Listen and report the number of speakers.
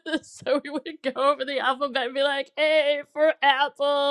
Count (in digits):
1